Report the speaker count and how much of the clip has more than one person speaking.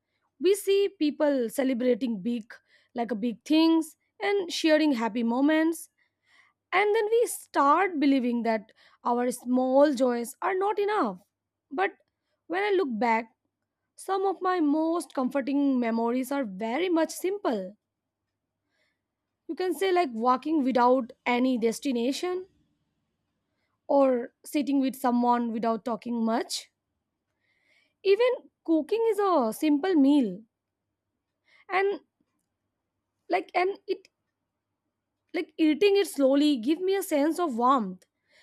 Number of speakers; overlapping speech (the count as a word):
one, no overlap